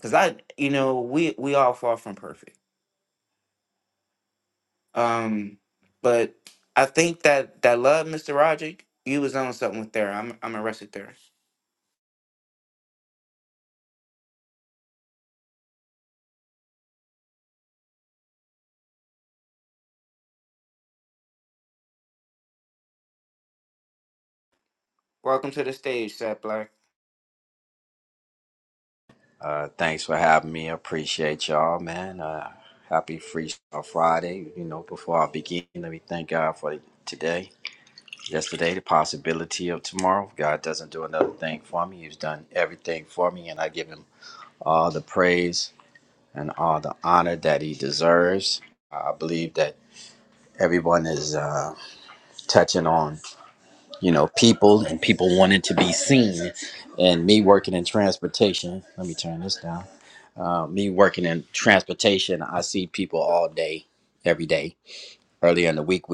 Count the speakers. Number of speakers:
2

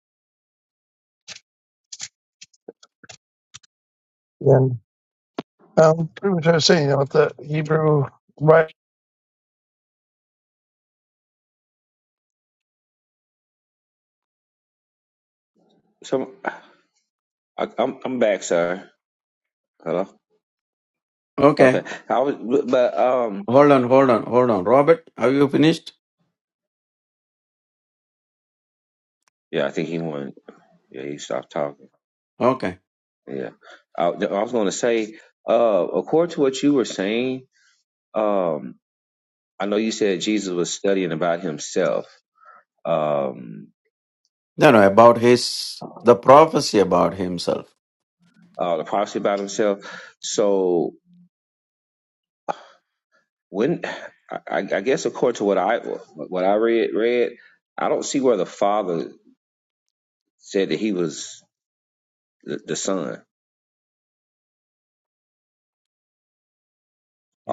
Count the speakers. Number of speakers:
3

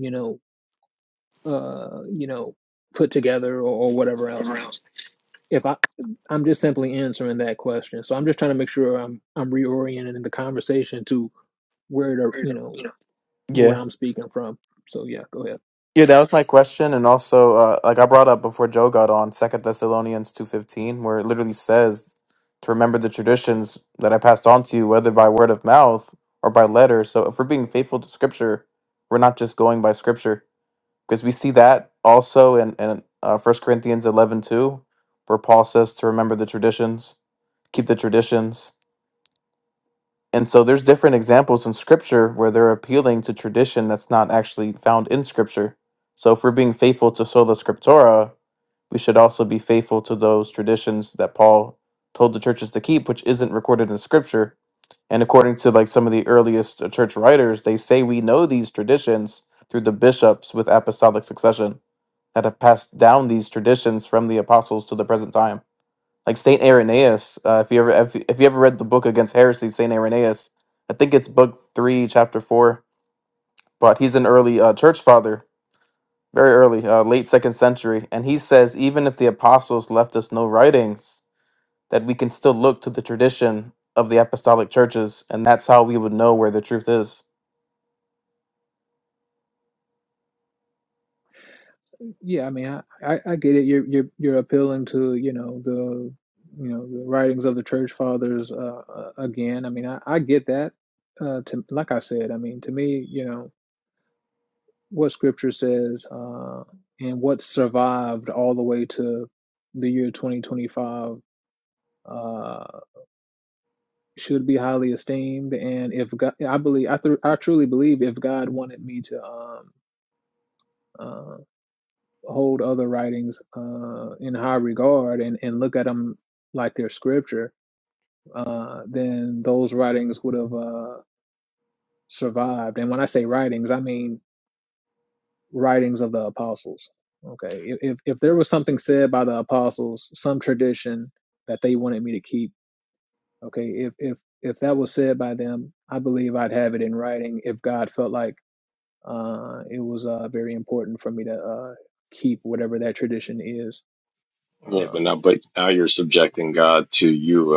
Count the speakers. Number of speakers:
3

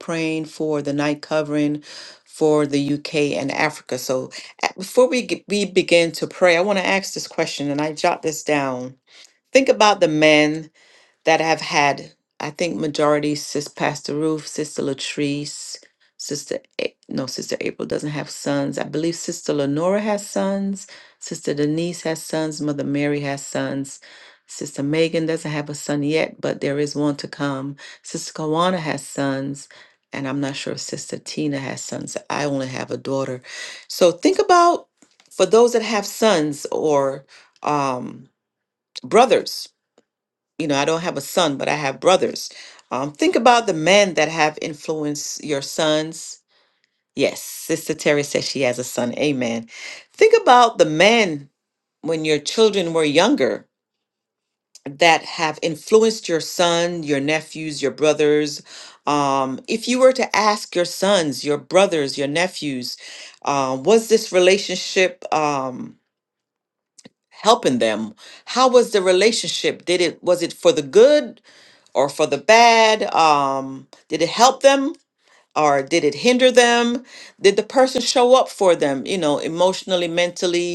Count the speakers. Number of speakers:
1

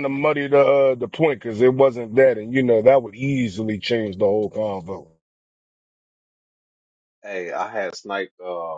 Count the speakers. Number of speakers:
2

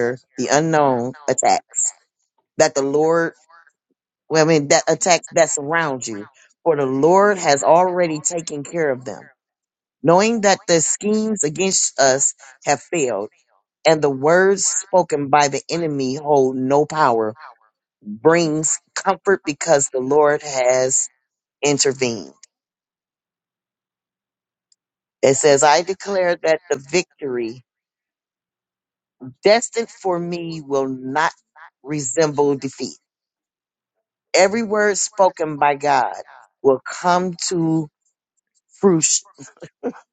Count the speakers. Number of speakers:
1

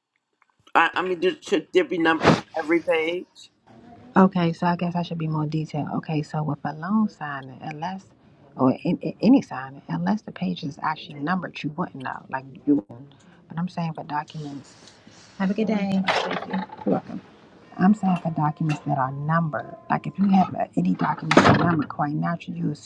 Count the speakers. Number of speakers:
2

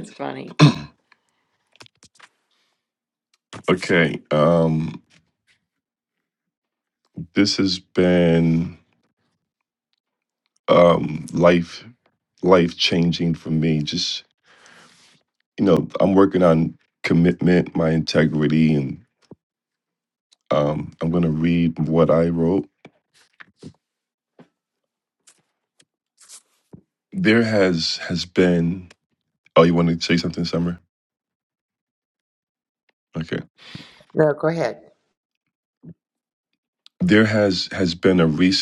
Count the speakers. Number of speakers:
2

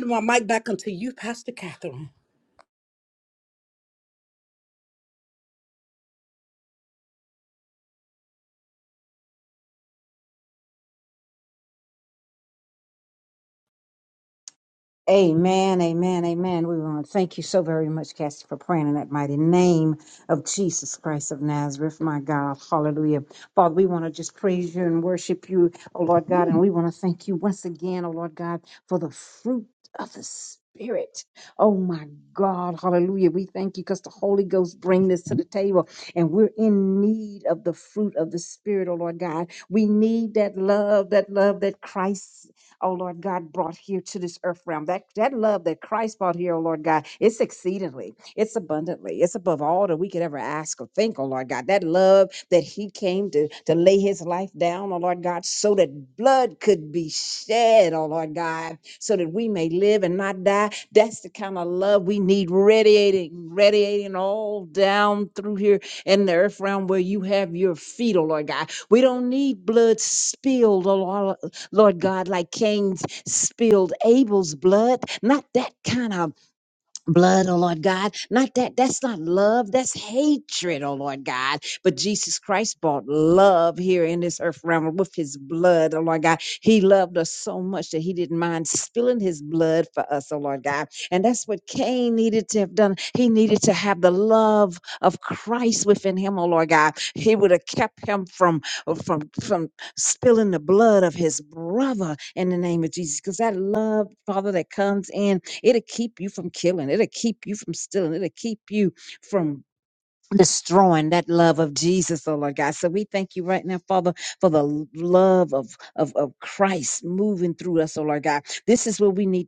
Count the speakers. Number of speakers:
2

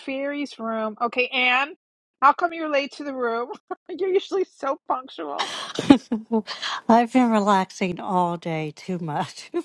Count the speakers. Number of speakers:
2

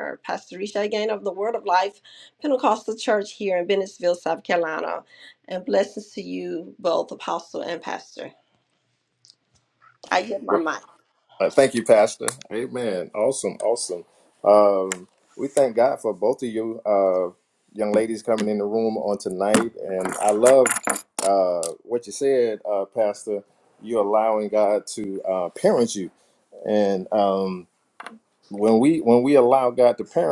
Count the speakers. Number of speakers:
2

